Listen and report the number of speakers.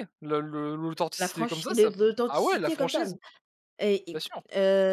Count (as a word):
two